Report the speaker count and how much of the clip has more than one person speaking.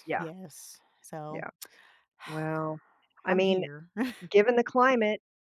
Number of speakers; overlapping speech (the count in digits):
2, about 11%